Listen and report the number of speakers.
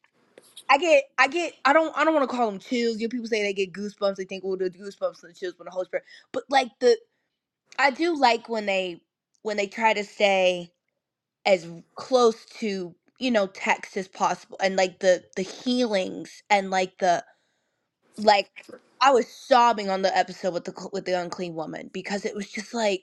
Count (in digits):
1